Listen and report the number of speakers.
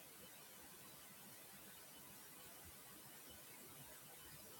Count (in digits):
0